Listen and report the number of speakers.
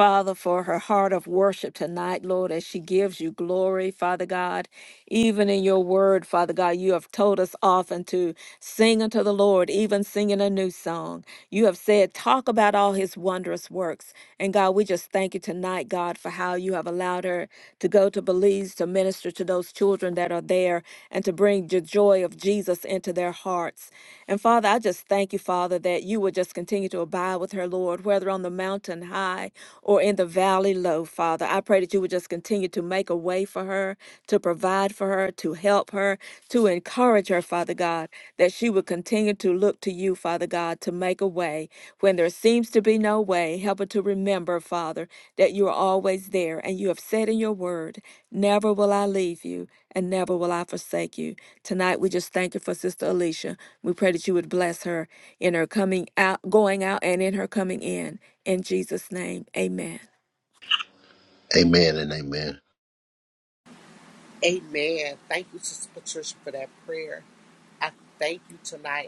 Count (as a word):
three